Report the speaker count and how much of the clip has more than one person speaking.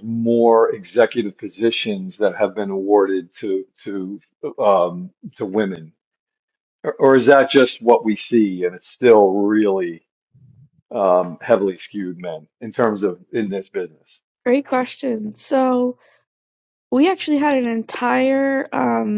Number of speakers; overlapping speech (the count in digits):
2, no overlap